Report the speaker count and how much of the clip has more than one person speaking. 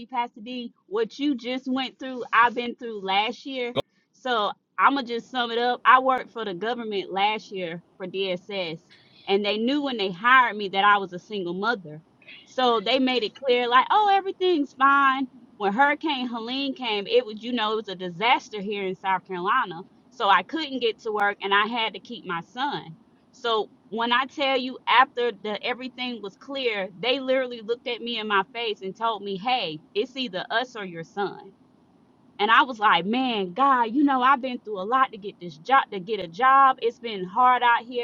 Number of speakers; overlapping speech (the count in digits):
1, no overlap